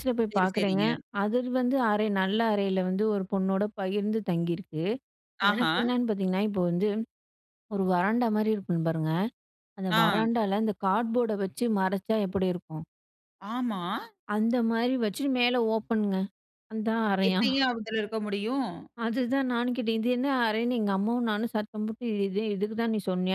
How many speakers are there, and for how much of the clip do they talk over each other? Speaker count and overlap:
2, about 7%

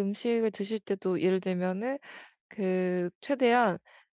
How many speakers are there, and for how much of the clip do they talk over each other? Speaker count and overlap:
1, no overlap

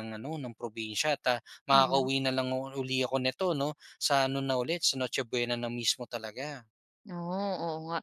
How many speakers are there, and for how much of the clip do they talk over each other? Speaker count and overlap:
2, about 3%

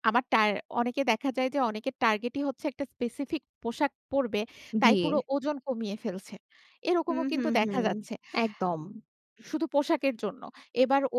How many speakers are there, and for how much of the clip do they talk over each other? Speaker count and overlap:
2, about 11%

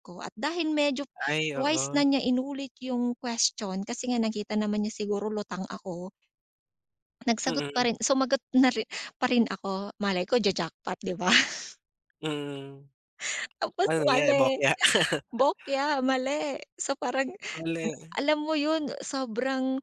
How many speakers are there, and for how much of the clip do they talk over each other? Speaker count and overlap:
2, about 9%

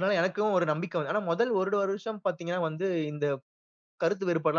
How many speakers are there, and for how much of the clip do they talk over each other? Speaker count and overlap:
1, no overlap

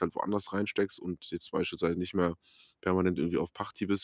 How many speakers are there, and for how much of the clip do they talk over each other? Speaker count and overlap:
1, no overlap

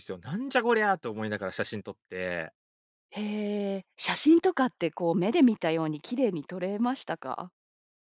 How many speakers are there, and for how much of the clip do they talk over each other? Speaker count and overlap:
2, no overlap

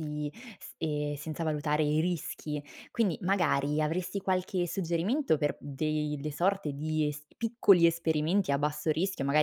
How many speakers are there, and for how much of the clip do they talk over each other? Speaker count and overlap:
1, no overlap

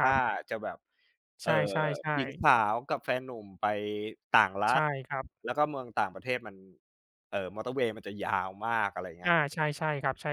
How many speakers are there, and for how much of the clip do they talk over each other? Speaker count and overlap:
2, about 6%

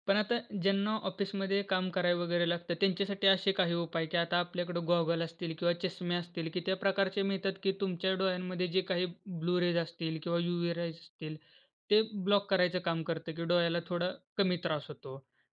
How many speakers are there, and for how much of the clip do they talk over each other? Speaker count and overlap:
1, no overlap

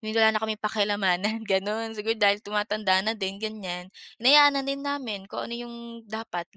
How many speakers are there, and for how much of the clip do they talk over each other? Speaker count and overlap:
1, no overlap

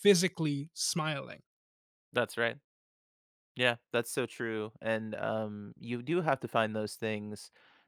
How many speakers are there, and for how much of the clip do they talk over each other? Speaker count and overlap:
2, no overlap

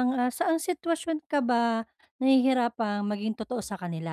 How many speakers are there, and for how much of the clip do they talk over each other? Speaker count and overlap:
1, no overlap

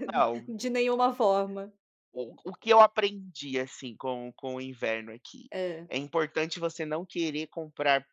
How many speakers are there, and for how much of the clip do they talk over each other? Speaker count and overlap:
2, no overlap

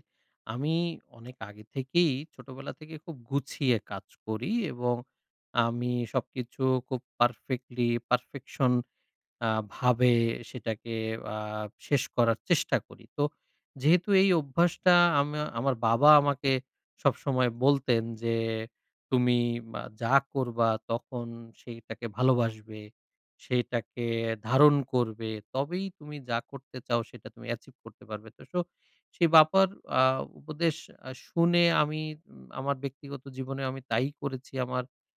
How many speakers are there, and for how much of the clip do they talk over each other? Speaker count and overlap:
1, no overlap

